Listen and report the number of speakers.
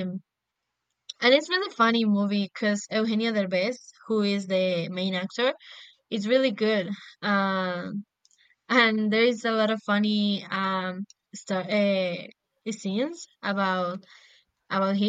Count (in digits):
1